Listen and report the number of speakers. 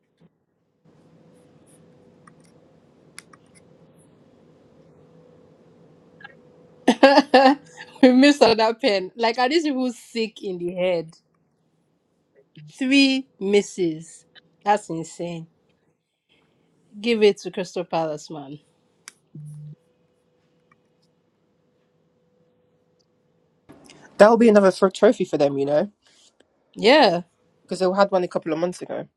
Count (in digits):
2